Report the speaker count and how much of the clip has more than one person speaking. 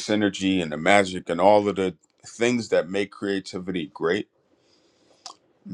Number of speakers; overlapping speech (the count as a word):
one, no overlap